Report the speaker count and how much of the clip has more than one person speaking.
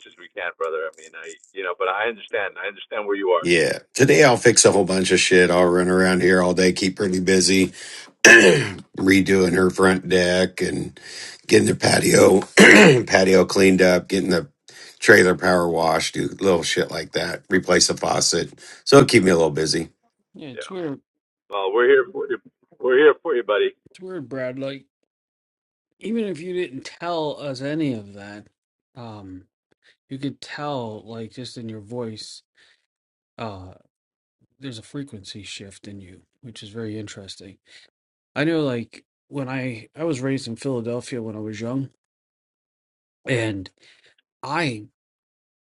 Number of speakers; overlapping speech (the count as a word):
three, under 1%